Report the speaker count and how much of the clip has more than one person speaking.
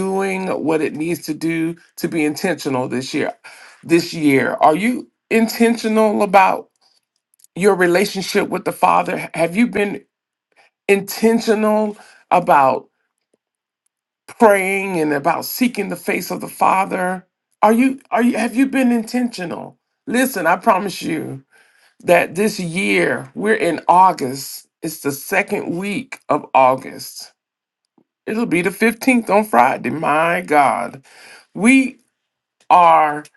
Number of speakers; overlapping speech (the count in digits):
1, no overlap